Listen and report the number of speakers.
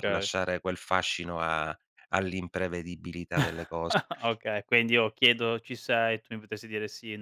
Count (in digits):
2